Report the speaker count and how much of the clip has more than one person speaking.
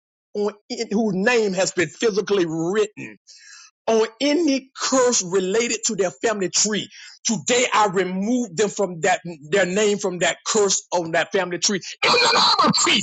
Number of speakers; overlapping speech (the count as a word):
one, no overlap